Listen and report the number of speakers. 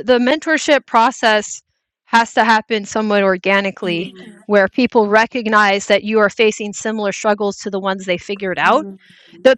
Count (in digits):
1